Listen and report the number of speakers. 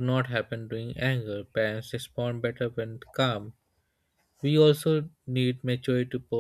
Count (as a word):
one